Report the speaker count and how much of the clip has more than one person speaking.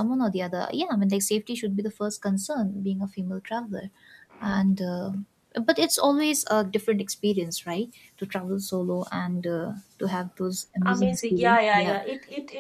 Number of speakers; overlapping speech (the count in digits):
2, about 9%